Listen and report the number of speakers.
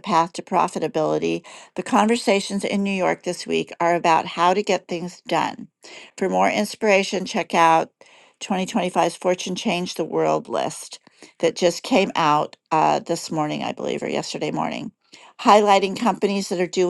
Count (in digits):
1